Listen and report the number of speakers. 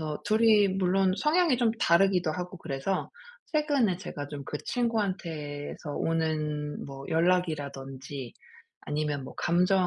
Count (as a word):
one